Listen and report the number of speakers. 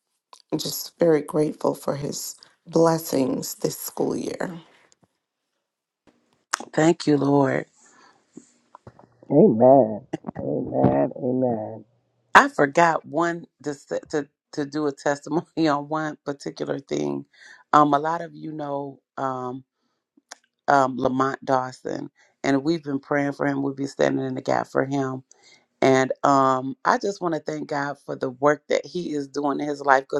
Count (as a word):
three